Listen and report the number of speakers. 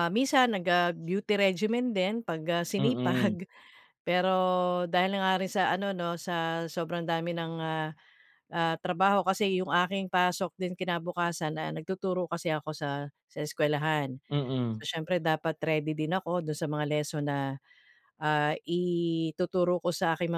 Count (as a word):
two